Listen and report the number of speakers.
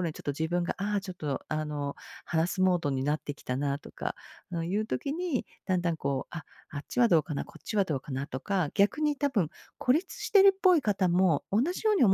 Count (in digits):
1